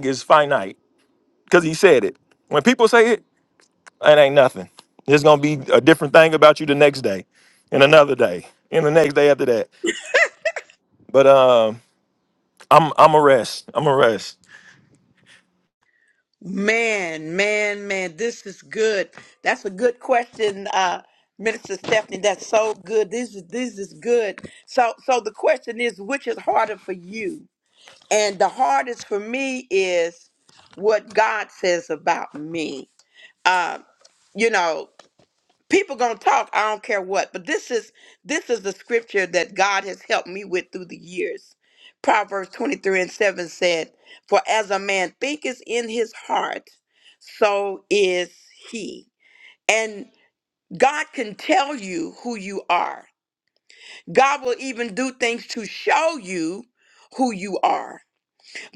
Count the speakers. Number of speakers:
two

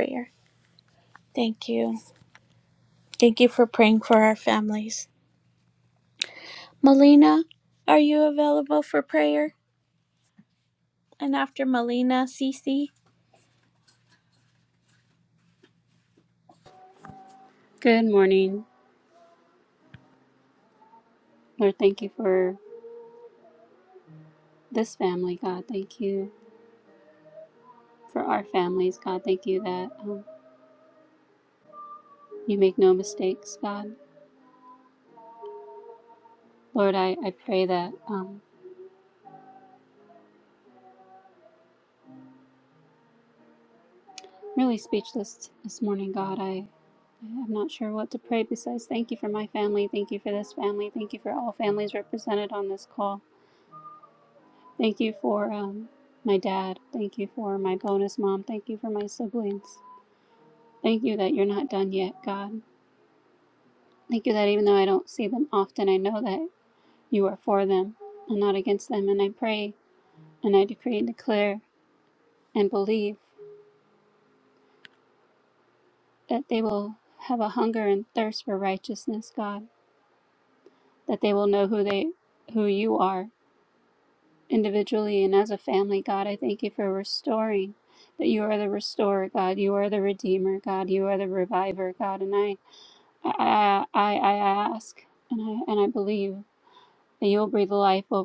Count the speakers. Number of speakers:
two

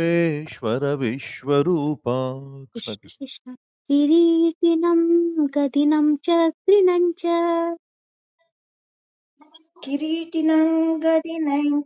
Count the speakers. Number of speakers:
three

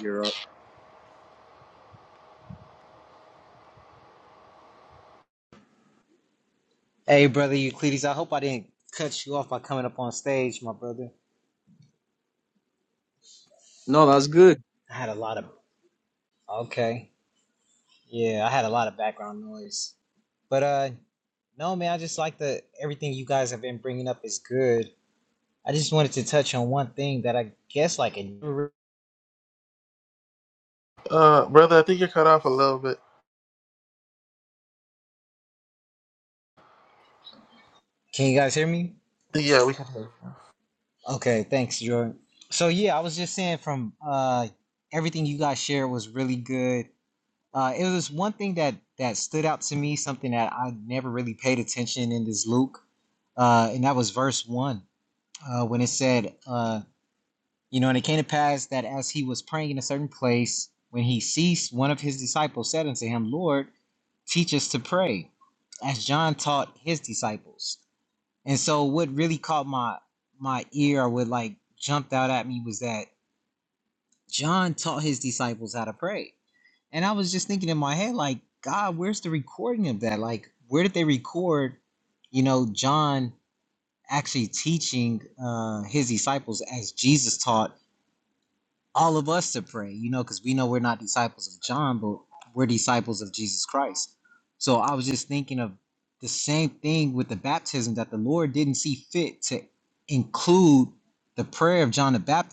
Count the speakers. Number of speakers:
three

